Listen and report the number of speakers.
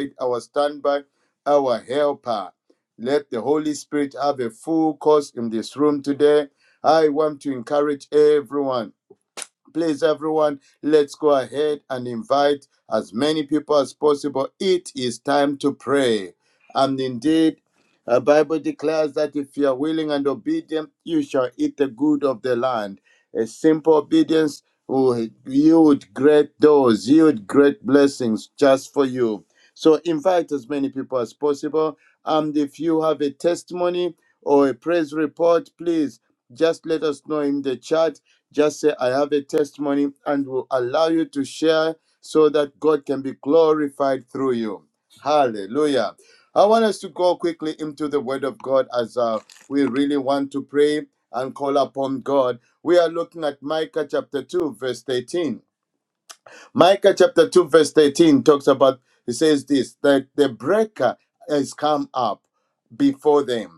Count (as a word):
one